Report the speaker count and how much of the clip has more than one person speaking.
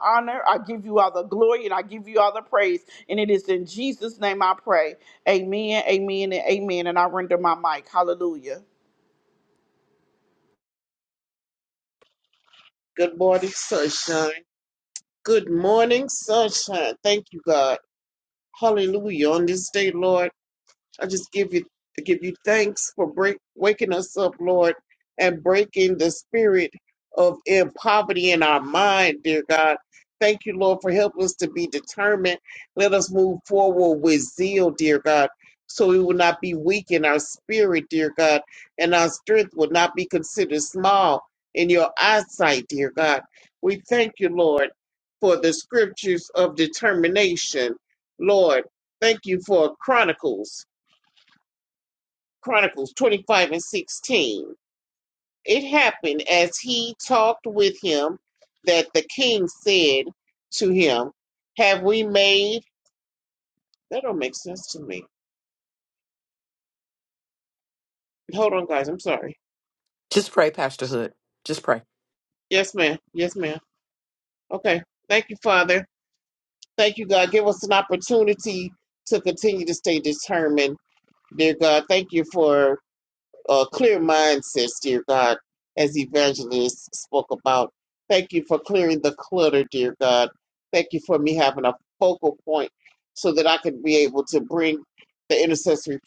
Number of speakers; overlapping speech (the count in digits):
3, no overlap